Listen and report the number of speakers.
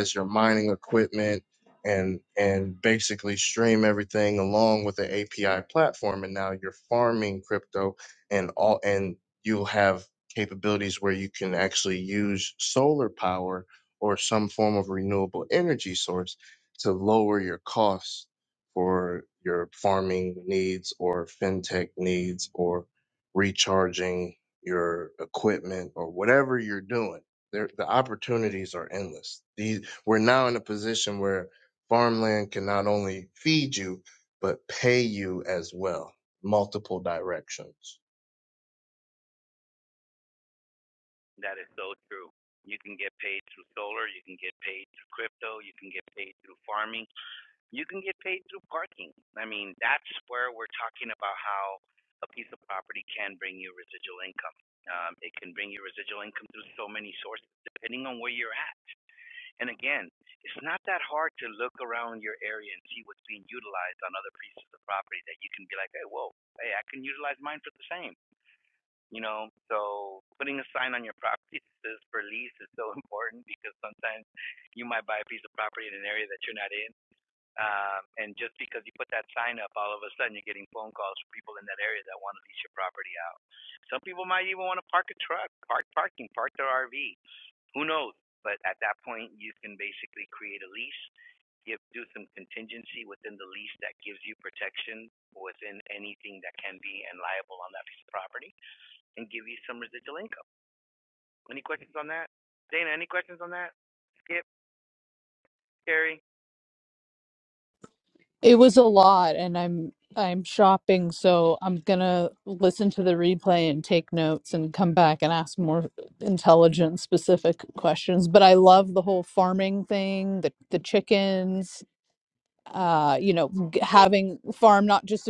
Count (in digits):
3